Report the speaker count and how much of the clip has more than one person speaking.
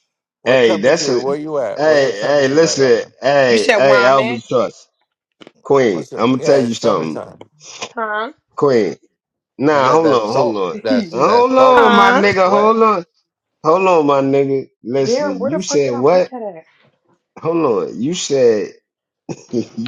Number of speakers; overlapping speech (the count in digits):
3, about 41%